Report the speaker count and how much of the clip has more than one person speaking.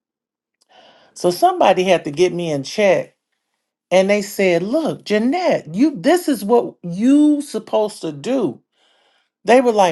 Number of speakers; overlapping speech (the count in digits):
1, no overlap